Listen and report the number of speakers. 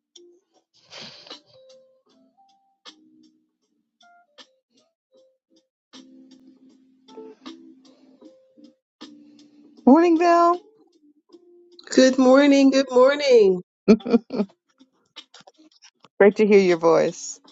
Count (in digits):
2